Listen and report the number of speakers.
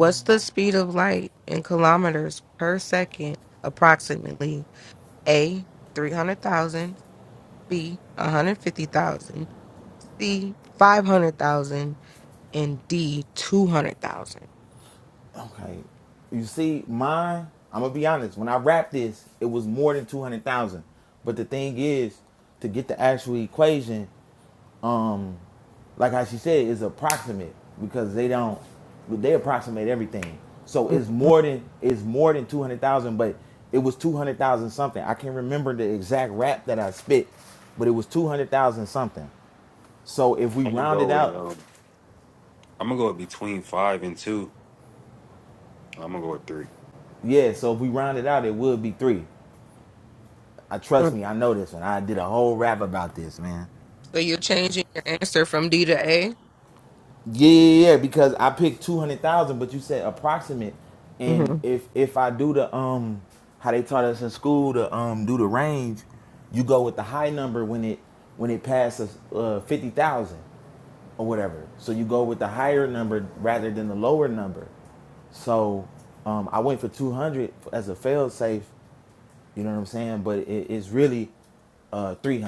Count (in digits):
3